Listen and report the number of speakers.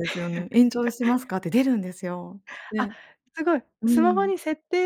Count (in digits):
2